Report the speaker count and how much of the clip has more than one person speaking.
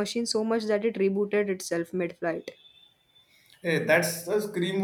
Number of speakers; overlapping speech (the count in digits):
2, no overlap